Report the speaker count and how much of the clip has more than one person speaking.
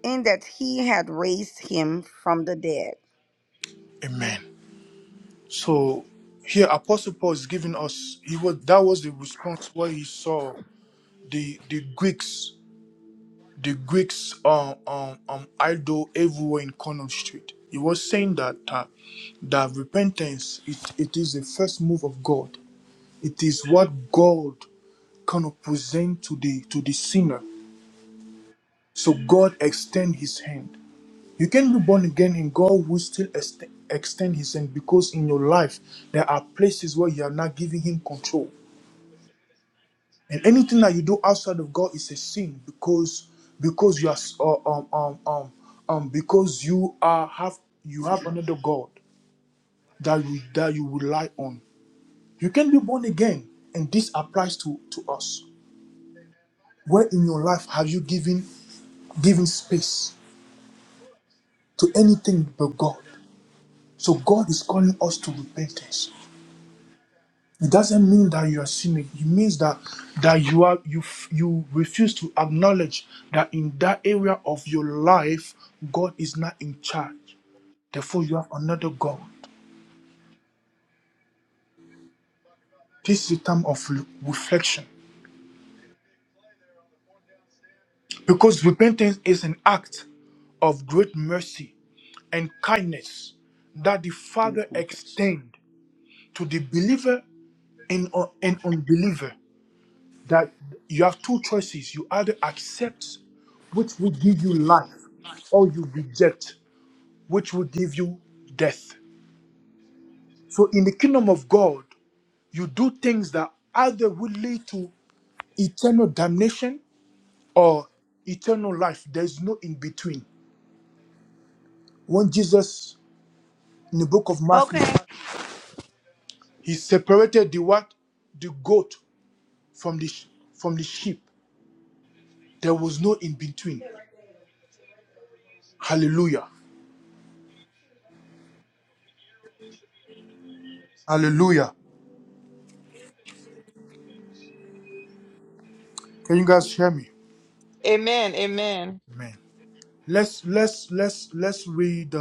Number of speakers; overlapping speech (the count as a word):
three, under 1%